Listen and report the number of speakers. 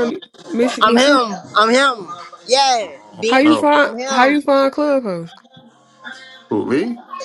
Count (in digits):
3